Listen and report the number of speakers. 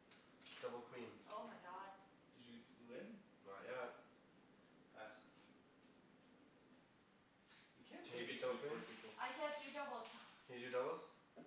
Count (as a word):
three